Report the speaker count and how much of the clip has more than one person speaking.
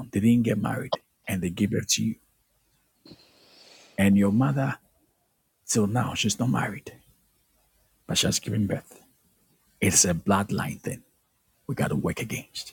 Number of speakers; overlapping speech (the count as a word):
one, no overlap